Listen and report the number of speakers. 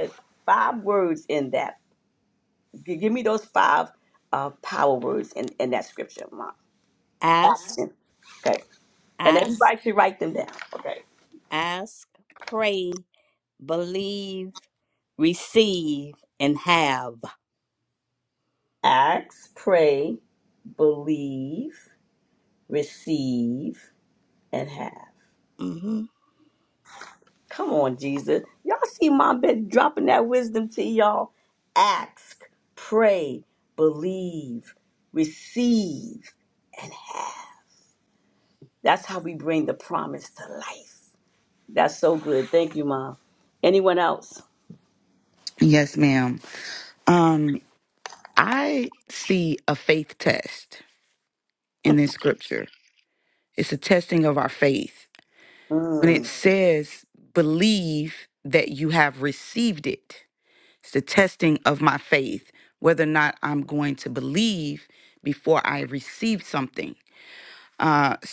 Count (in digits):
3